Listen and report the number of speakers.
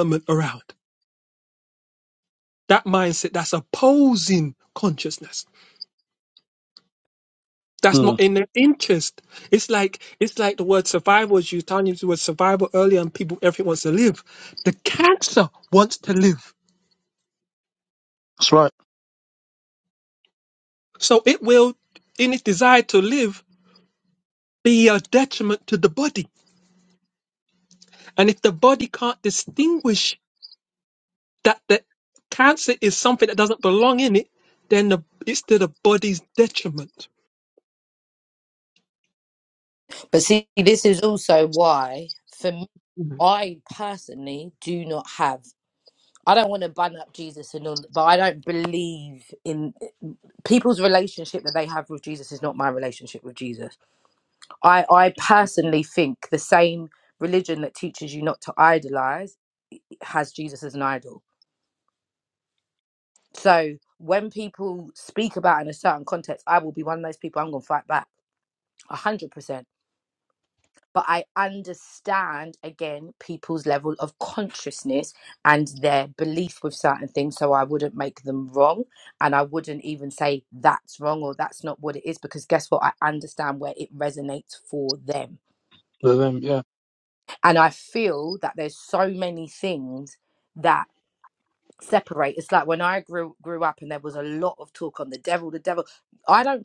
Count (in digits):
3